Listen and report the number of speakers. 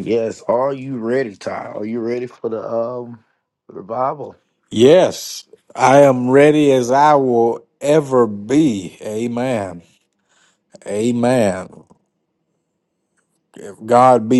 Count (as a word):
two